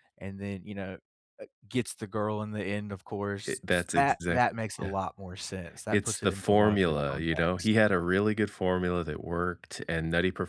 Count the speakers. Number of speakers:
2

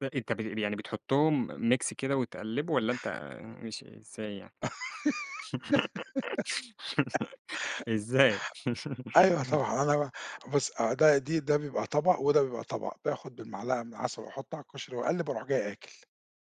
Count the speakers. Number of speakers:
2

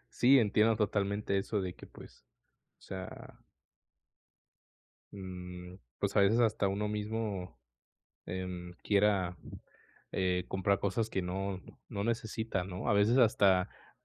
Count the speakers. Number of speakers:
1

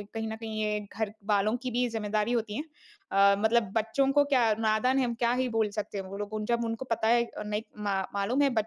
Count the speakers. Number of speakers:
1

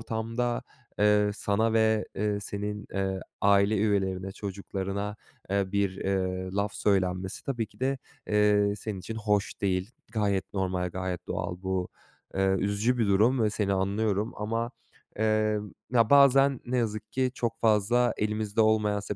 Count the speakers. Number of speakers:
1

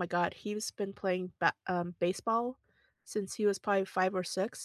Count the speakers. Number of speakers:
1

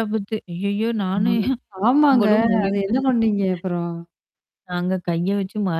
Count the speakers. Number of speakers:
2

